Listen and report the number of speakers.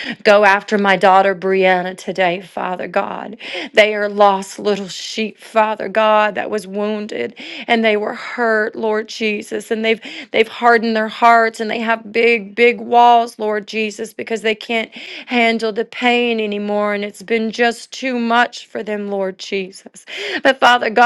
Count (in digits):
1